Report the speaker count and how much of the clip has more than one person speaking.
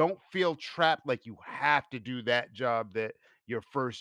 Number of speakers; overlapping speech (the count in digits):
1, no overlap